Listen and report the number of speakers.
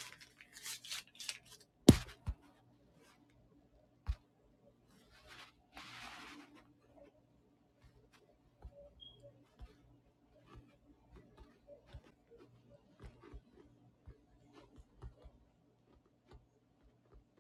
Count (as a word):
zero